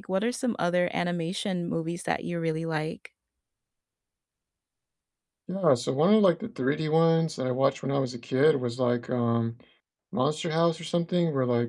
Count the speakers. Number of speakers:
two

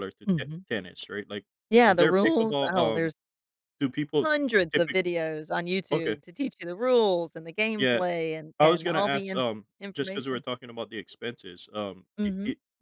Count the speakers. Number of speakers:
two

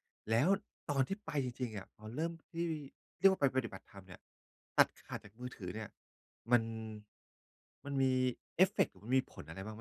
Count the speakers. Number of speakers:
one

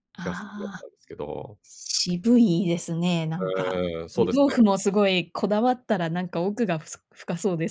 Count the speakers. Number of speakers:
two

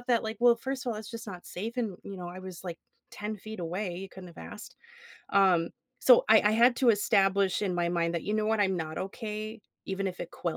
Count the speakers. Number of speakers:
one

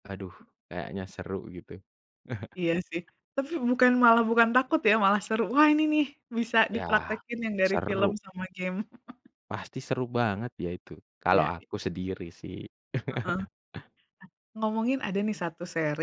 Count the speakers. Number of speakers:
two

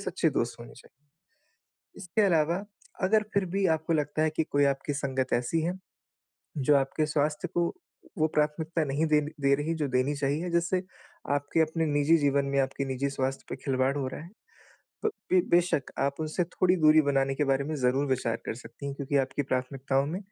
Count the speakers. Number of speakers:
one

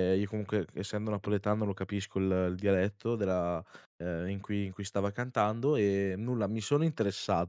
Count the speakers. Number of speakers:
one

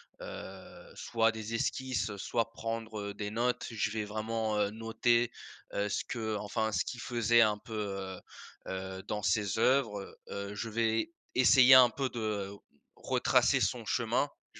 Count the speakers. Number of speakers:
one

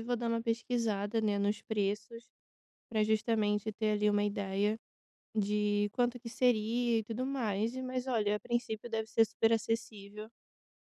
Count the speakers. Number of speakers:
one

